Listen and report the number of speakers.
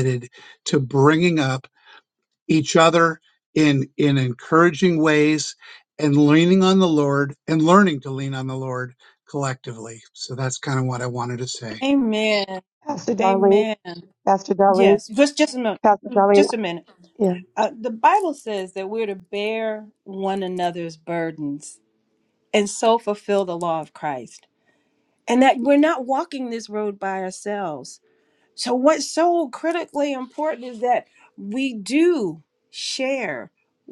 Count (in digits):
3